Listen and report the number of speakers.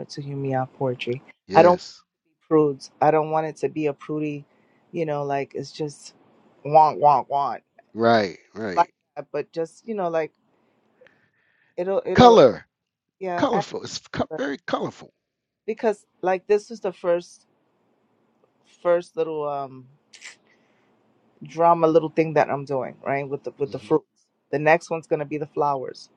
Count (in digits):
2